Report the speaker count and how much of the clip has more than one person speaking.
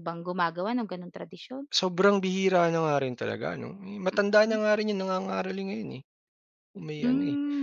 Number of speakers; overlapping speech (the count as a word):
two, about 11%